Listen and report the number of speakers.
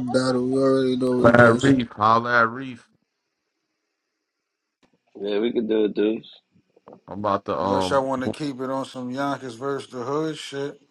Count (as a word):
four